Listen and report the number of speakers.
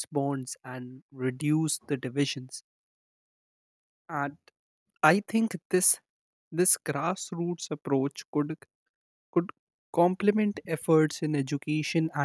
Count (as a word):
one